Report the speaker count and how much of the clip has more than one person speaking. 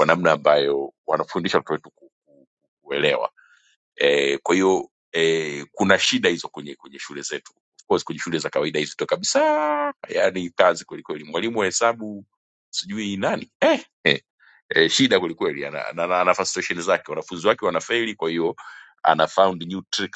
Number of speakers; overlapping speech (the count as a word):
one, no overlap